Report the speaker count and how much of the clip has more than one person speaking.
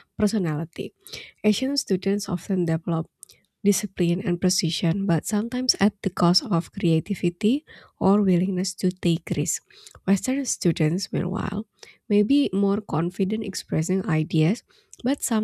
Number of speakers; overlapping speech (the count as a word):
one, no overlap